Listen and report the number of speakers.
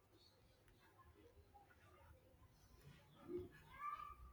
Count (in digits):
0